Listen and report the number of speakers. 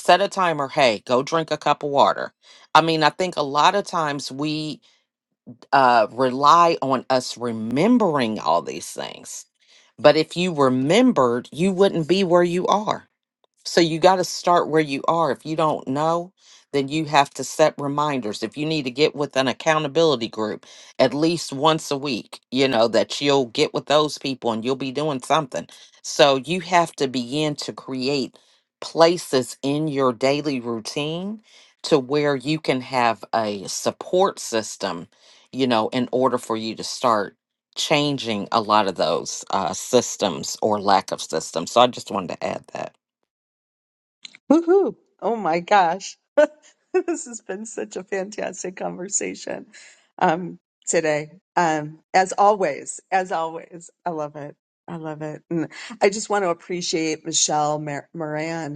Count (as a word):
two